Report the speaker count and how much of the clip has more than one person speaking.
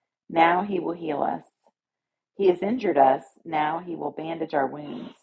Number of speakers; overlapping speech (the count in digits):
1, no overlap